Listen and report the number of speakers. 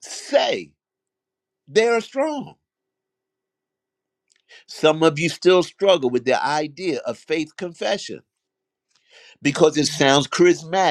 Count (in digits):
1